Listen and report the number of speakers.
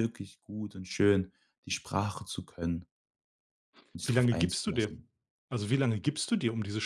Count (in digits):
2